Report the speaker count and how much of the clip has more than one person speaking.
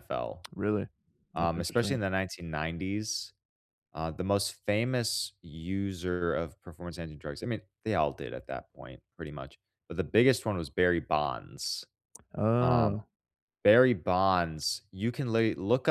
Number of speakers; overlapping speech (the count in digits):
2, about 6%